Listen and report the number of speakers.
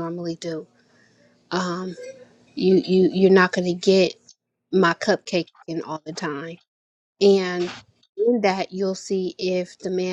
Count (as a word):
one